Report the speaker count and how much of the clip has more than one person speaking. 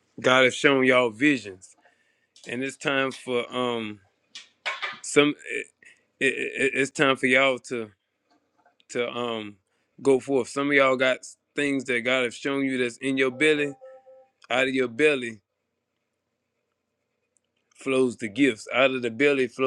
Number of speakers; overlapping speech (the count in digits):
1, no overlap